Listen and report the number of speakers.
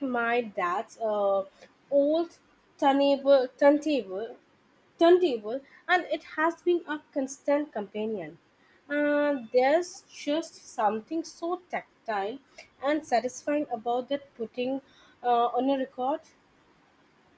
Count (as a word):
one